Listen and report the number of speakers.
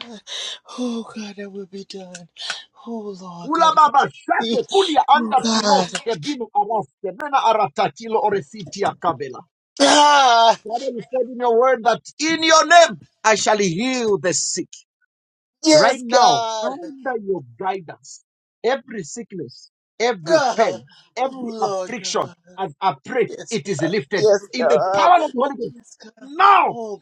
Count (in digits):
2